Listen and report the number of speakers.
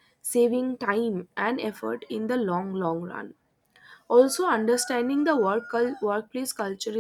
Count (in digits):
1